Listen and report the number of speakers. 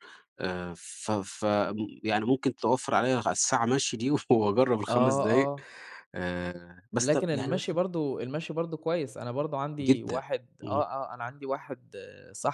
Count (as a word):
two